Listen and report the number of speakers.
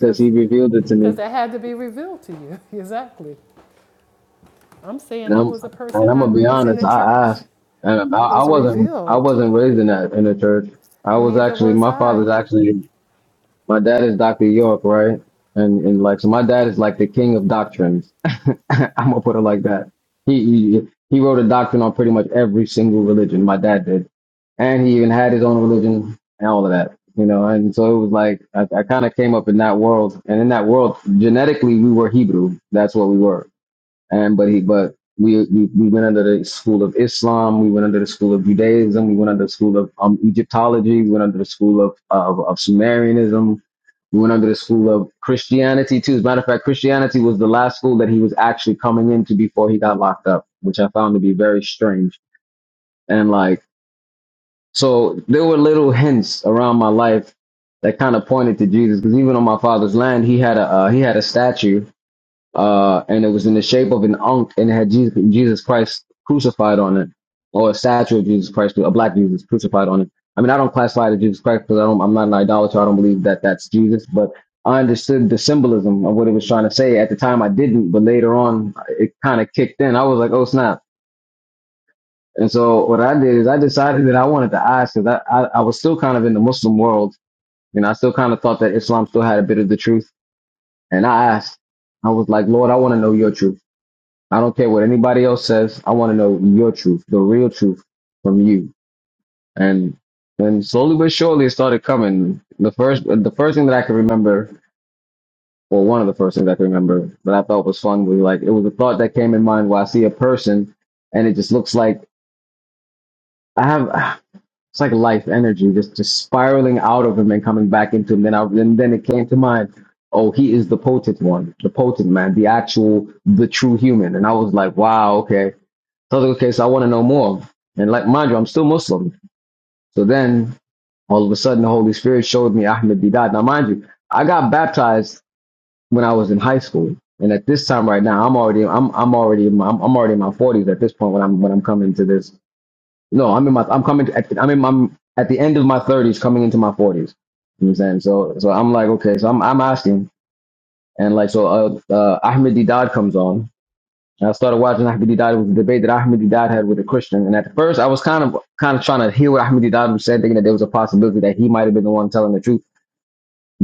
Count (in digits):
2